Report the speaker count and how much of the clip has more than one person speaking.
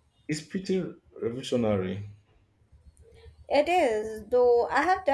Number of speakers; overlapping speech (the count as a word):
two, no overlap